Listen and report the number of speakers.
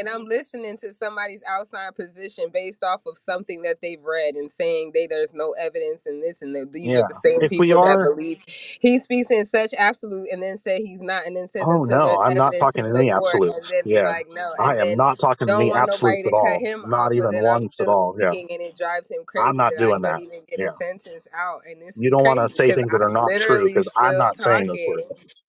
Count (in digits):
2